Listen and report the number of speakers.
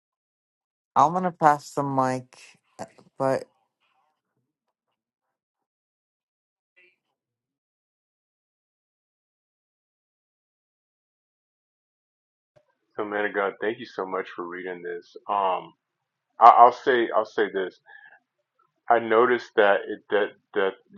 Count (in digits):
2